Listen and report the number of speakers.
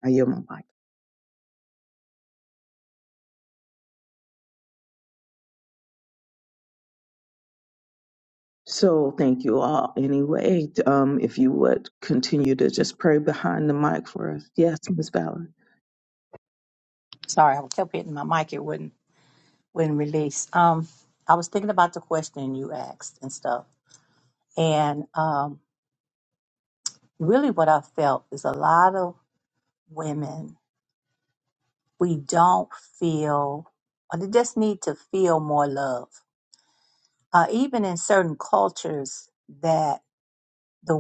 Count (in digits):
2